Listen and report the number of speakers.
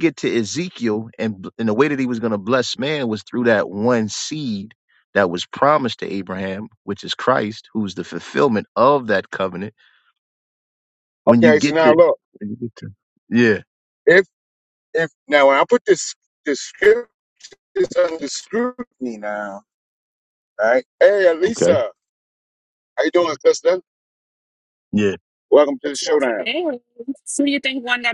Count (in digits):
3